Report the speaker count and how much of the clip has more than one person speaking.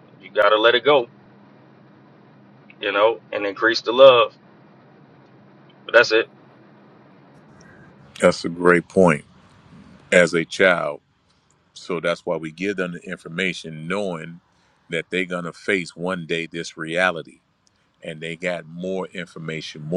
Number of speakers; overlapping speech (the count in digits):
2, no overlap